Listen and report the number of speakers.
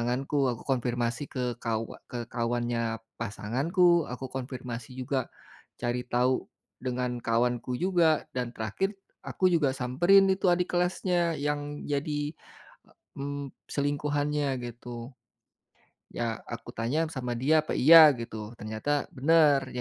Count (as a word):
one